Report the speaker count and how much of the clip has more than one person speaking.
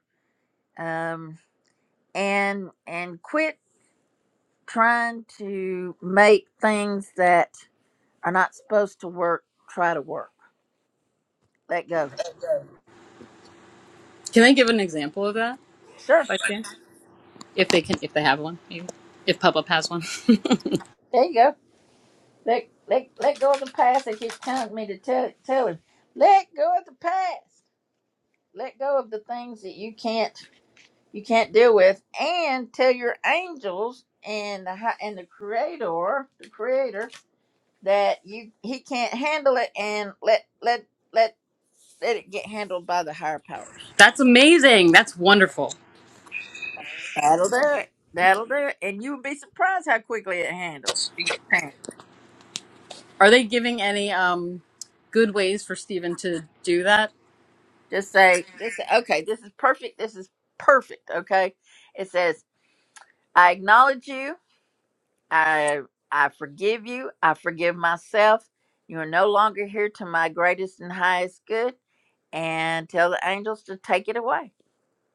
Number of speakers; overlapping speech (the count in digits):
2, no overlap